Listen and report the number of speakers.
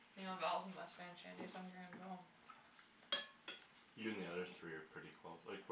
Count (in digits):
2